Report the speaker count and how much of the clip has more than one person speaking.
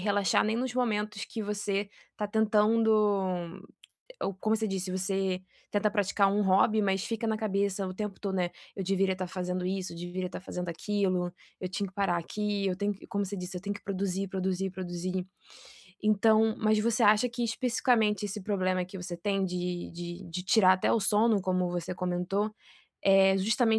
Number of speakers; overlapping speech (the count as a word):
one, no overlap